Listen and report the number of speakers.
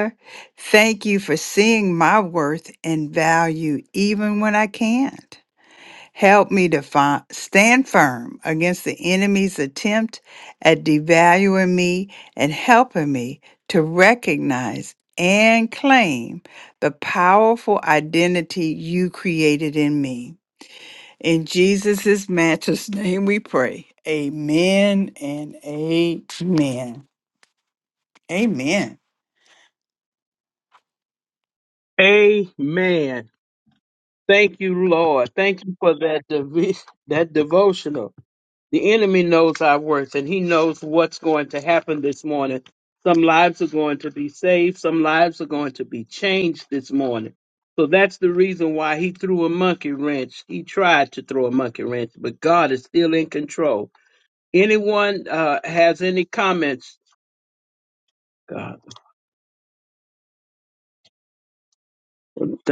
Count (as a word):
two